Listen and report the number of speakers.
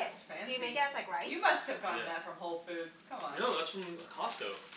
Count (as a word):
three